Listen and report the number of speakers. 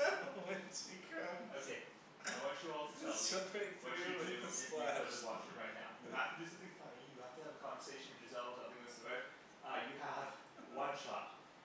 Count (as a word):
two